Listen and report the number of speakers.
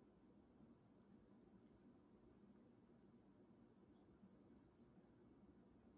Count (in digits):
0